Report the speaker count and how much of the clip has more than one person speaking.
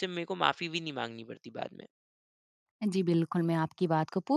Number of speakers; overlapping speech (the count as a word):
two, no overlap